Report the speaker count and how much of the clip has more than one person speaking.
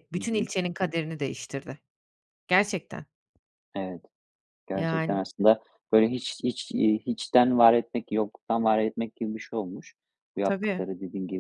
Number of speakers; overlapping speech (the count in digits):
2, about 10%